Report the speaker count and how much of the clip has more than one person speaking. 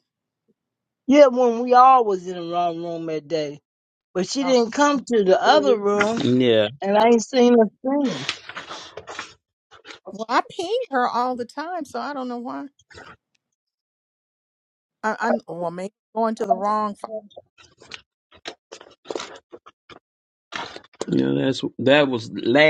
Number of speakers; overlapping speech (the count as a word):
three, about 1%